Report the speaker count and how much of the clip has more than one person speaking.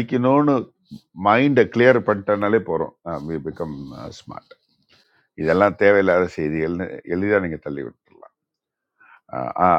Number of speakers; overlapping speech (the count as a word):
one, no overlap